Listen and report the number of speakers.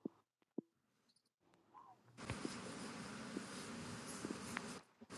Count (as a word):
zero